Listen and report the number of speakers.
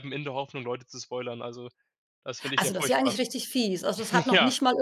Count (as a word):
two